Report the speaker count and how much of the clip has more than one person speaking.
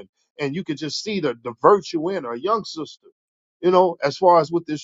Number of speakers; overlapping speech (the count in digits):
1, no overlap